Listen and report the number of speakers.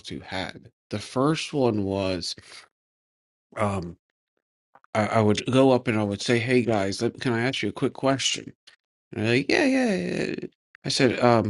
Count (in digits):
1